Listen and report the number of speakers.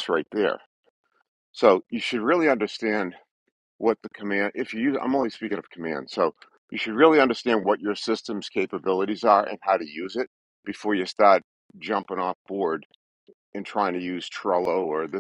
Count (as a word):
one